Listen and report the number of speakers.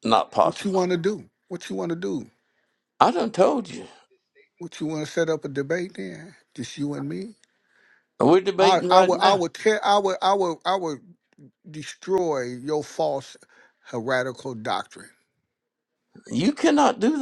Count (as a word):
two